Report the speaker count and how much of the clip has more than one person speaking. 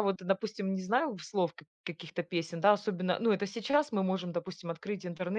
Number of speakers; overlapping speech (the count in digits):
1, no overlap